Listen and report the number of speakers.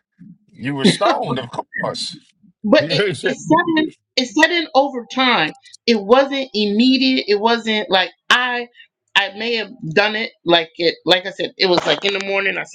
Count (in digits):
2